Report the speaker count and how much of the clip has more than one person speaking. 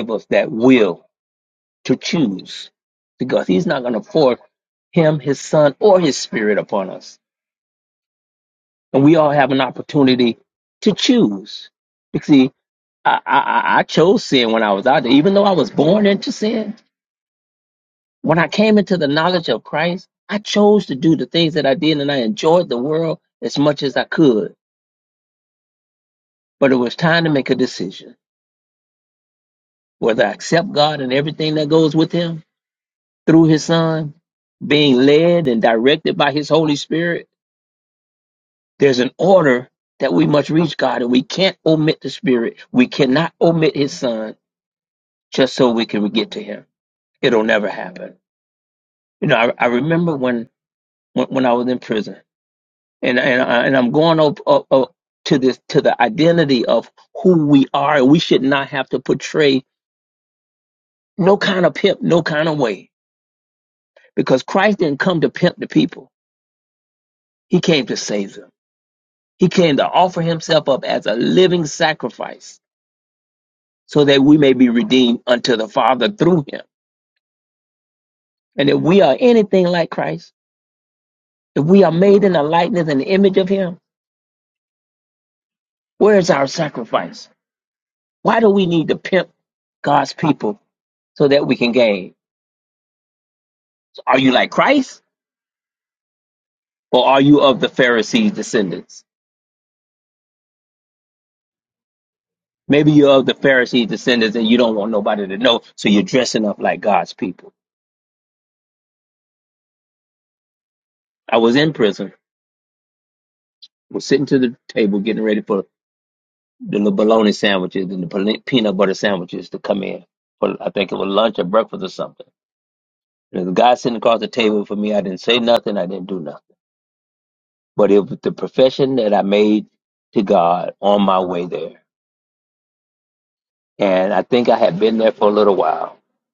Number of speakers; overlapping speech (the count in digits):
1, no overlap